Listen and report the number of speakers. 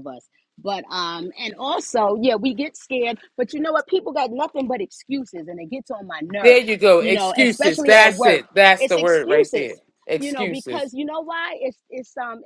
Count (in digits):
2